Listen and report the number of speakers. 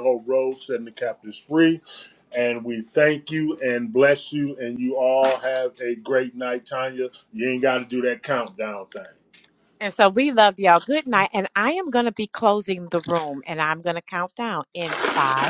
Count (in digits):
2